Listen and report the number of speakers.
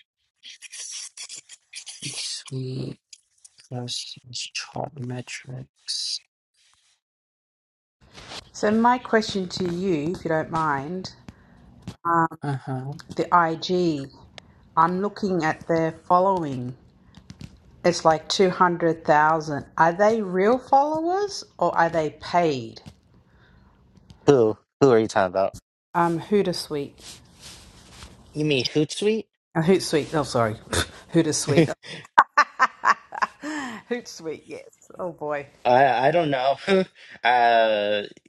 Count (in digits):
3